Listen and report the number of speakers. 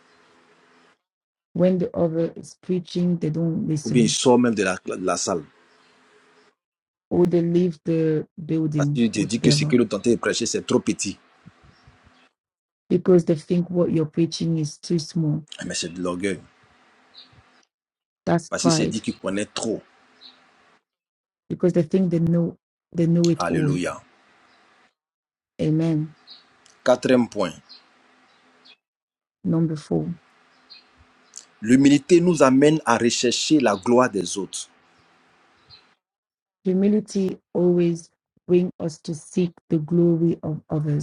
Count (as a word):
two